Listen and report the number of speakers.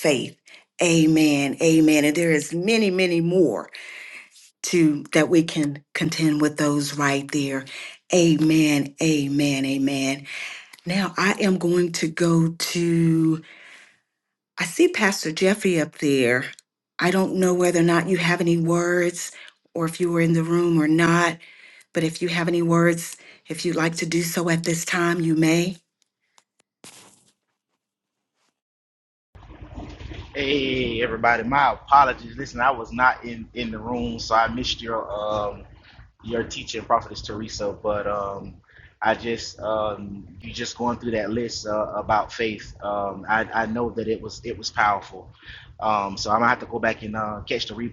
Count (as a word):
two